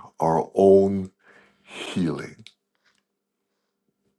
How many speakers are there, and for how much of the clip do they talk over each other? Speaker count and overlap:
1, no overlap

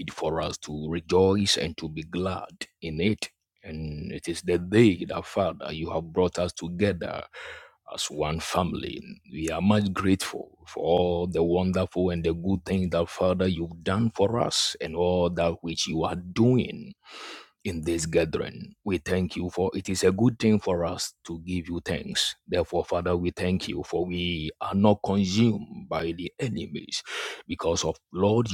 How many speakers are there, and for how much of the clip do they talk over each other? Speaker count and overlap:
1, no overlap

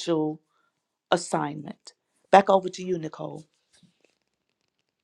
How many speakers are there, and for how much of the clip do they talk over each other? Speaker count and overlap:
1, no overlap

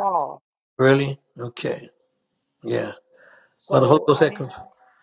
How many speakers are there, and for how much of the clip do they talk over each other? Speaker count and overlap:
2, about 14%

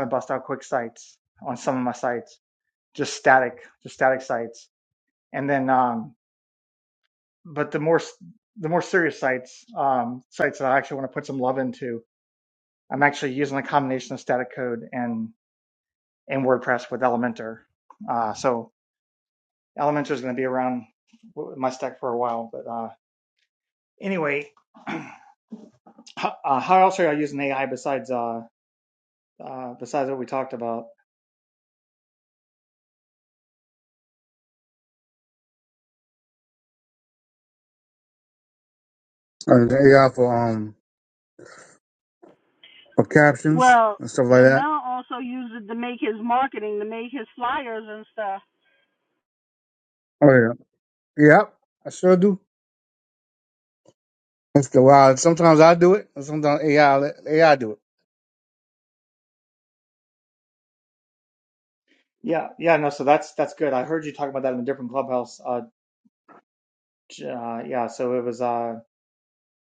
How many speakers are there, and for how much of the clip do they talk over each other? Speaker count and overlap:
3, about 1%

